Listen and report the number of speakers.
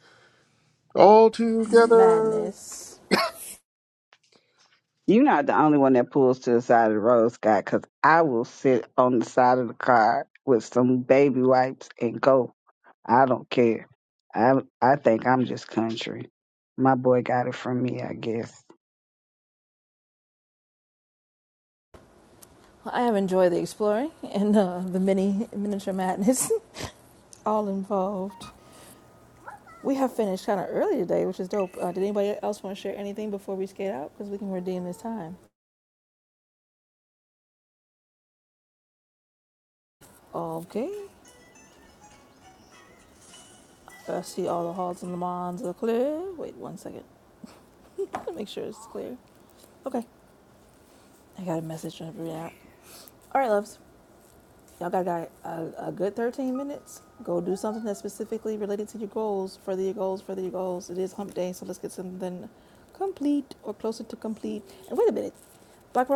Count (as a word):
three